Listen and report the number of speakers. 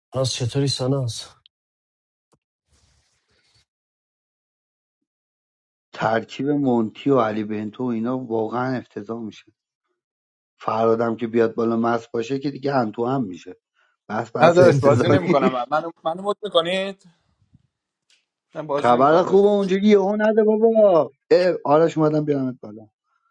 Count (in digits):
3